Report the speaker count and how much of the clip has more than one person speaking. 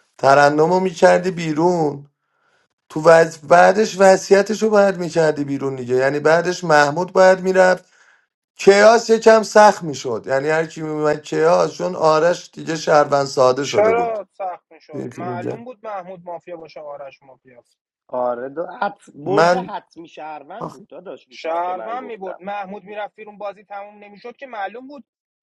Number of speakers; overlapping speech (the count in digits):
3, about 11%